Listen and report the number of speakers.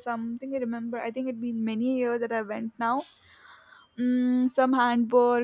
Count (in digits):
1